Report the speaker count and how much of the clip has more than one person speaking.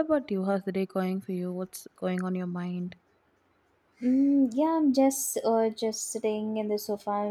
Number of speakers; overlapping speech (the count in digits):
2, no overlap